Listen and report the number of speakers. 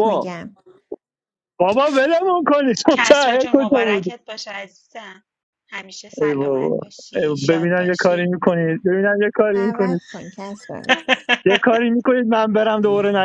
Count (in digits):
3